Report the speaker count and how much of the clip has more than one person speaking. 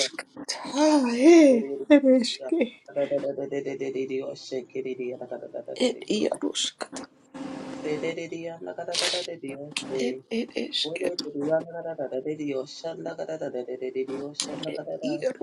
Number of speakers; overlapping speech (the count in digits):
2, about 14%